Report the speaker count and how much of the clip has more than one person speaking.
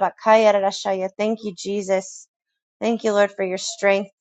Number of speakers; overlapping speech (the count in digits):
1, no overlap